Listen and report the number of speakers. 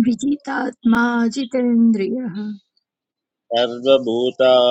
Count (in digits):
2